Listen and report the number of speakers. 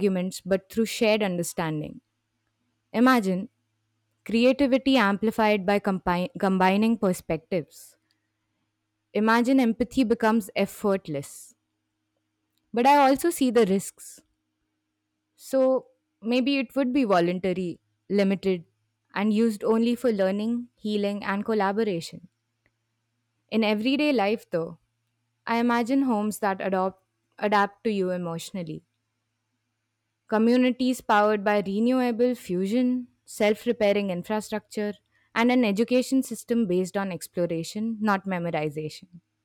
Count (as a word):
one